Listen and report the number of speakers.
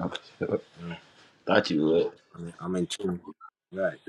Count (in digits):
2